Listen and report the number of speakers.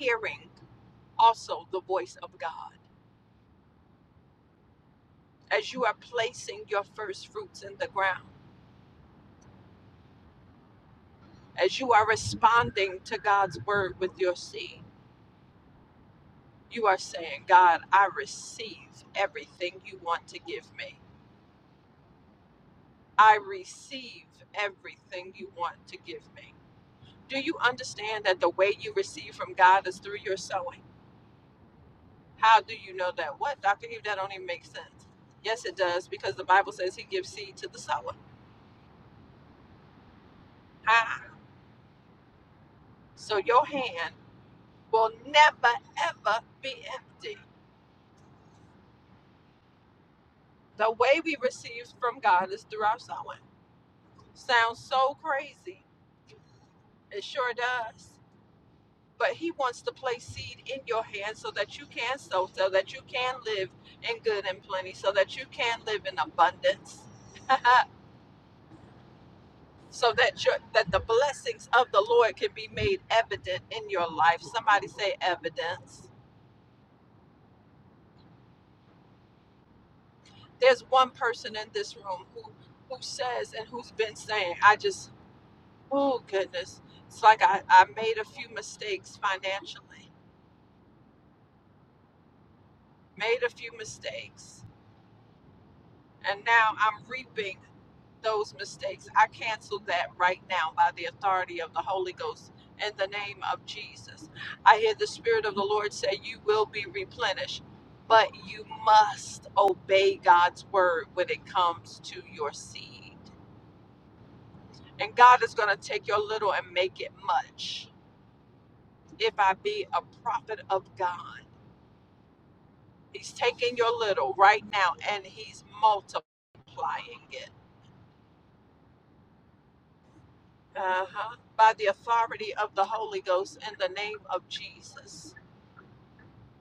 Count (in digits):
1